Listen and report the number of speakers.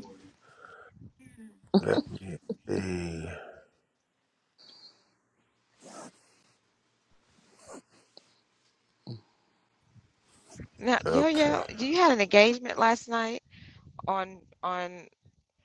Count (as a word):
two